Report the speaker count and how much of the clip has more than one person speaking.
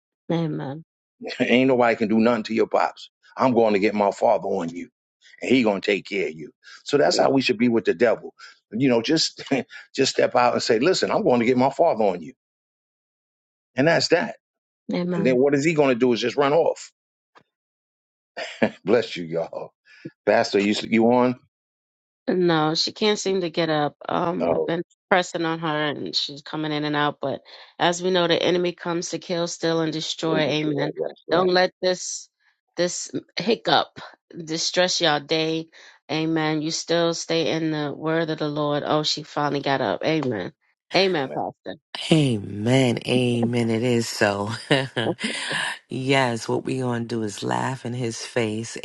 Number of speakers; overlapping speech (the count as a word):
three, about 3%